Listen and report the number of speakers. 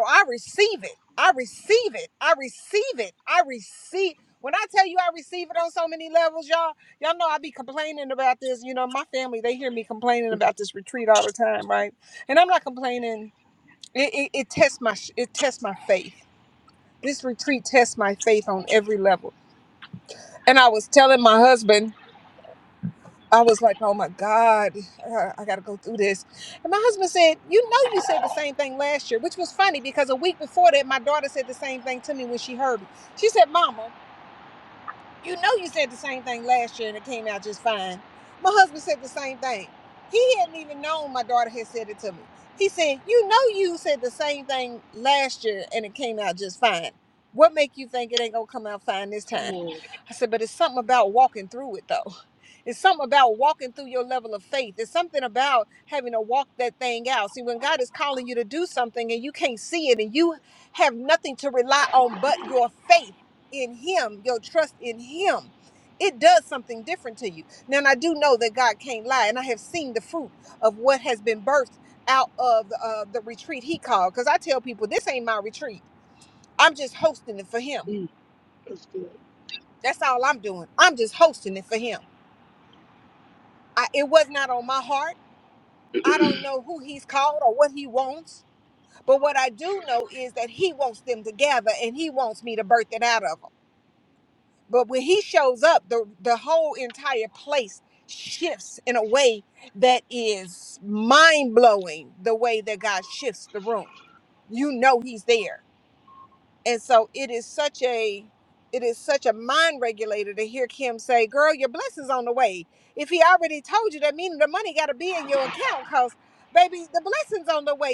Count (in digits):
2